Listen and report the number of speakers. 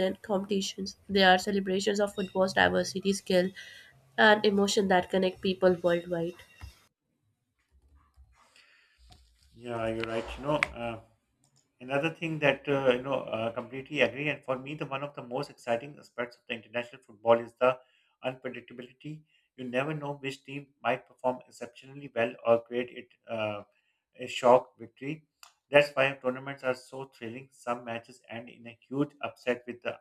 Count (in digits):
2